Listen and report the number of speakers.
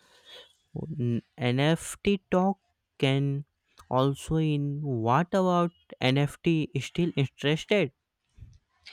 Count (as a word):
one